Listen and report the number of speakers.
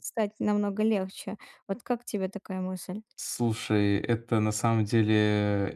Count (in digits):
2